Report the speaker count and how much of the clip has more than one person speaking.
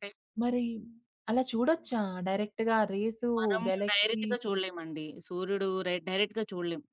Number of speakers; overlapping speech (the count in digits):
2, about 13%